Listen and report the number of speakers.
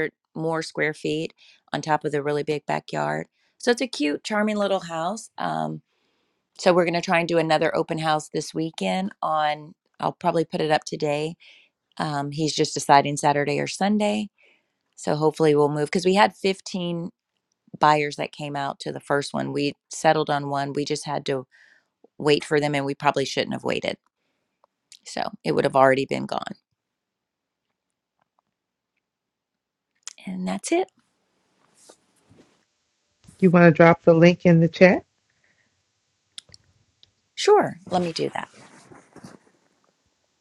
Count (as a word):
two